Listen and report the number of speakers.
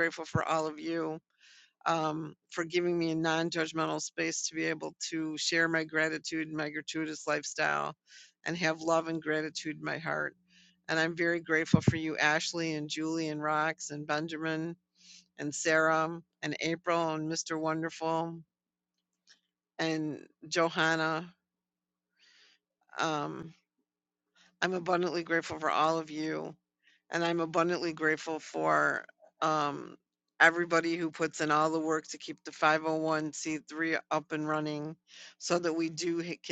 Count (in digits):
1